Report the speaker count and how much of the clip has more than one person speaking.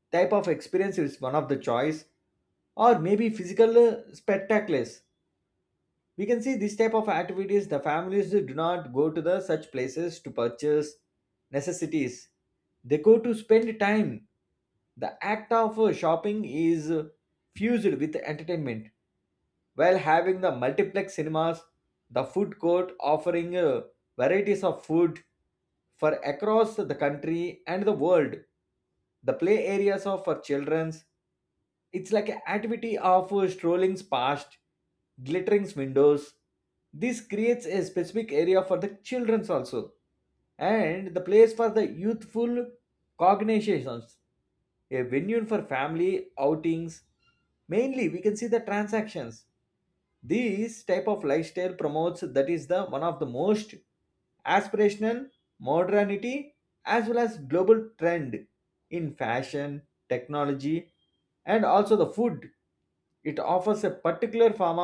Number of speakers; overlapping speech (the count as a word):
one, no overlap